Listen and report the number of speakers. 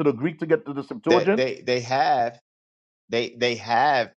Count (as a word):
two